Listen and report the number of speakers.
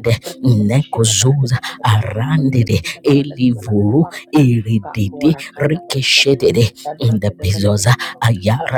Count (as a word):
two